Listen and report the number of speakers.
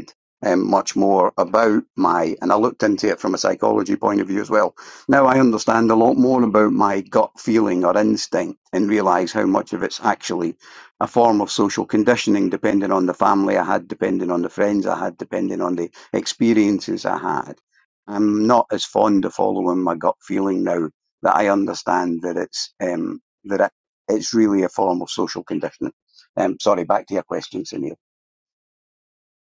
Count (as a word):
one